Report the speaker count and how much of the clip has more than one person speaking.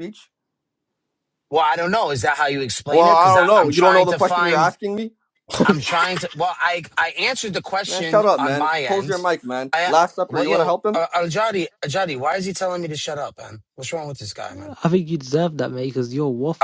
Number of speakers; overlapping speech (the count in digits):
3, about 24%